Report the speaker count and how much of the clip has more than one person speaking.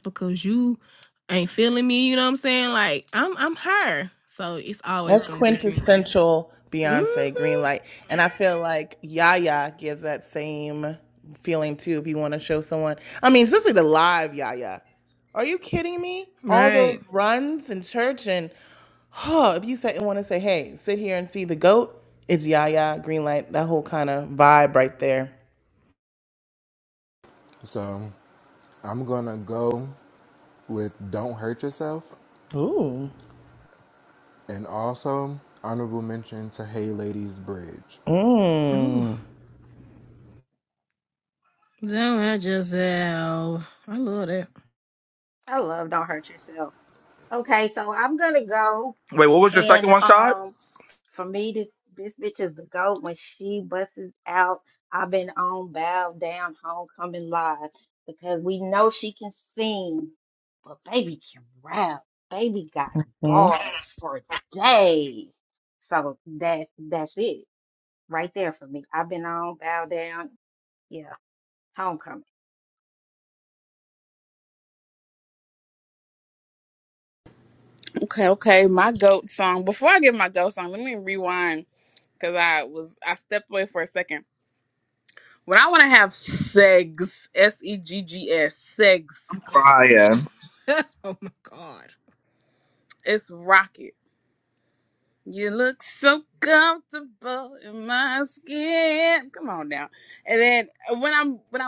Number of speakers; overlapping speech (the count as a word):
six, about 4%